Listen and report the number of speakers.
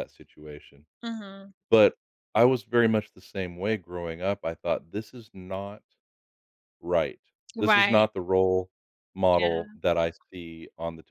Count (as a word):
two